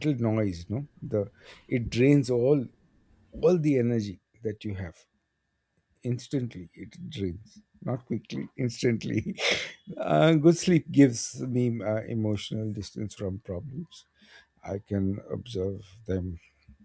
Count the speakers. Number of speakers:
one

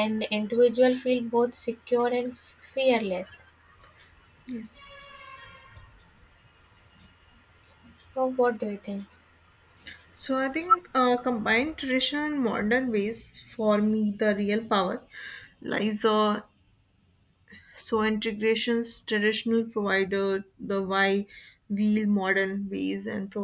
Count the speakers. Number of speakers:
two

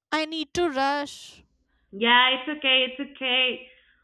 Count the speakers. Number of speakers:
two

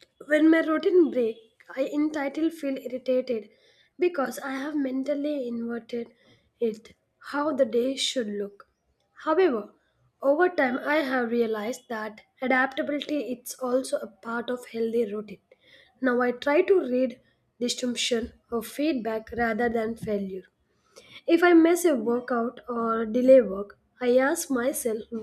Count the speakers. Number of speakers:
one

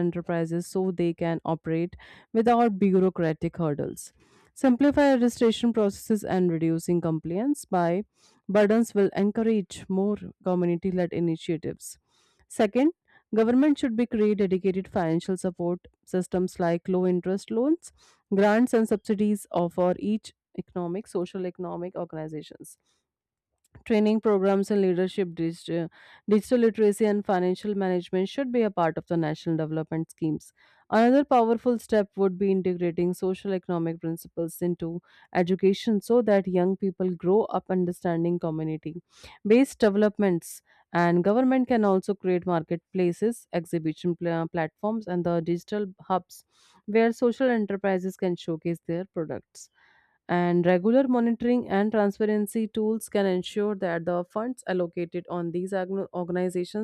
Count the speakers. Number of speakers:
one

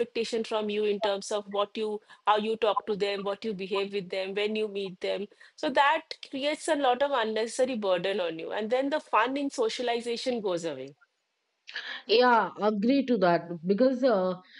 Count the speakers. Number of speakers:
two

